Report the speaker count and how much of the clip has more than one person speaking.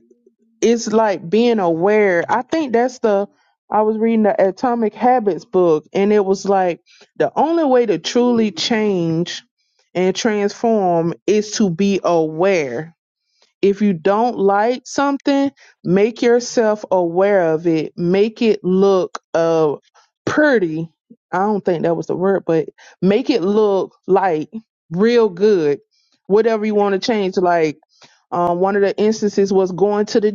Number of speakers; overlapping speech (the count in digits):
1, no overlap